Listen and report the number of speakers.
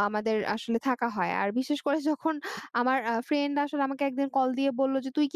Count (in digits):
1